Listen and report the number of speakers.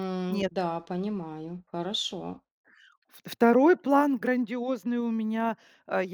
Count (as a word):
two